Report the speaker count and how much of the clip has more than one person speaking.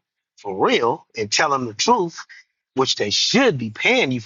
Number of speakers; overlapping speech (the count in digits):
1, no overlap